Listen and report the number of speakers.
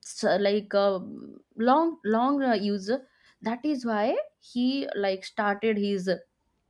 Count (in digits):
1